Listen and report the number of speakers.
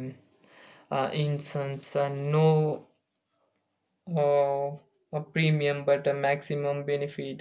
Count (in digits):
1